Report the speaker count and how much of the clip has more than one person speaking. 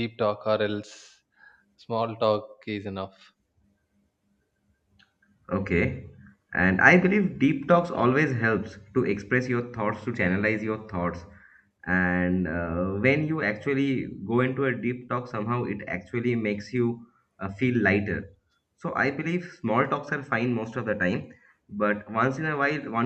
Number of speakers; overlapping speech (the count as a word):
two, no overlap